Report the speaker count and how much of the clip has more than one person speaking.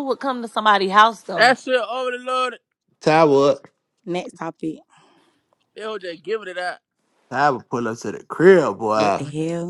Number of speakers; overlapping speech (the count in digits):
4, about 4%